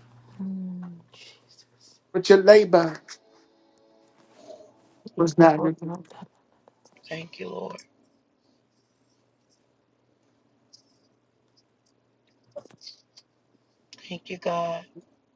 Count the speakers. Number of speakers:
3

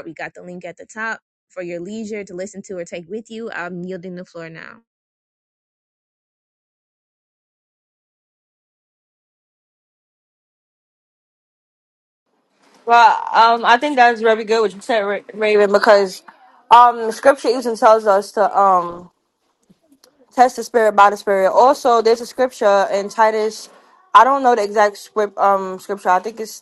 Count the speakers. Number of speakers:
2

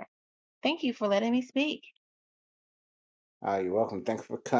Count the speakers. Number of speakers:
2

